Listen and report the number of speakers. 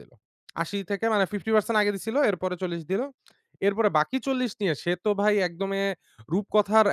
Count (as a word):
one